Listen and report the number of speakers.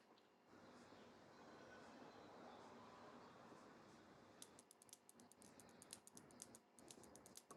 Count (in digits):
0